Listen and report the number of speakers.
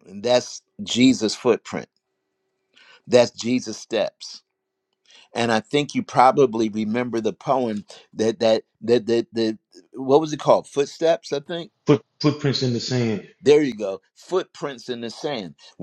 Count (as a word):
two